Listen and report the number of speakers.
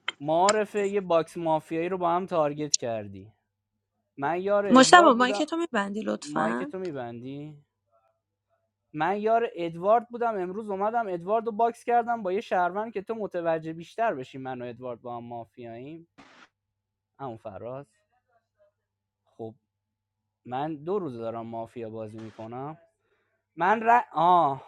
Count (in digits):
2